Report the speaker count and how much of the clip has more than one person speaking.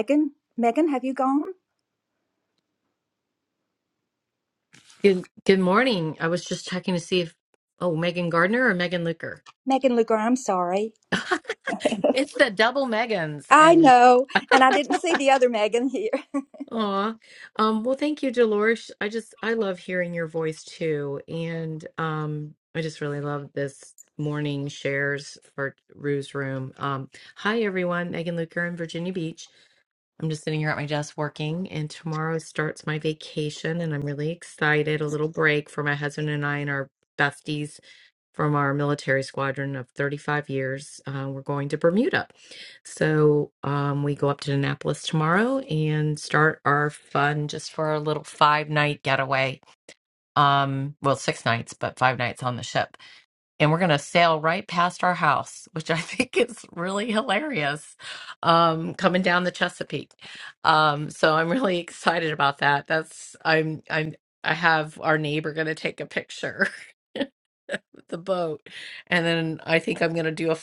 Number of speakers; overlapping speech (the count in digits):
2, about 1%